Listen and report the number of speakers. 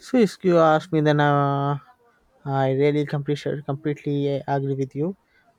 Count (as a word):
one